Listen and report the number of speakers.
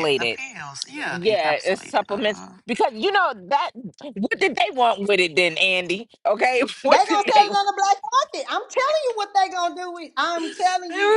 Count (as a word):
three